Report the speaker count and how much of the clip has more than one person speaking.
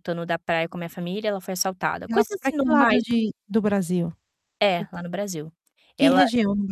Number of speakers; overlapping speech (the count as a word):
two, about 20%